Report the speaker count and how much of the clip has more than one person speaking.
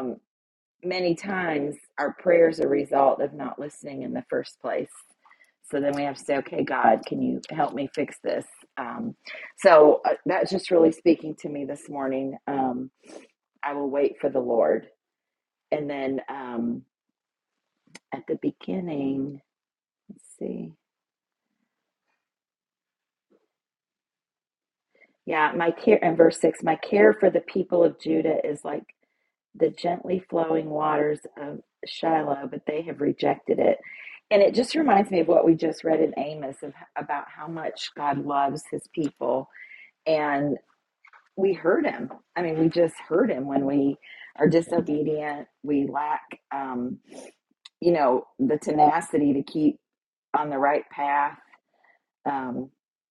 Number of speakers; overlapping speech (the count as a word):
one, no overlap